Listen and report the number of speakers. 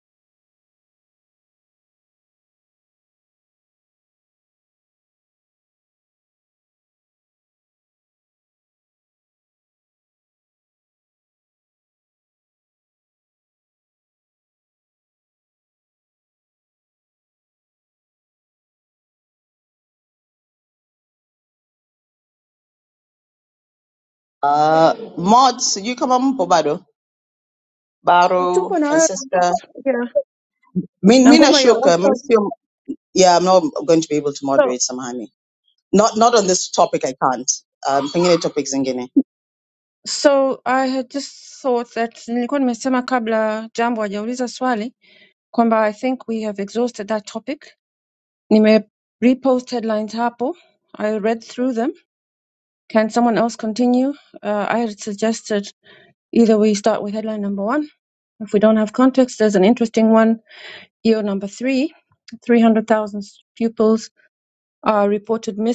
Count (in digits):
2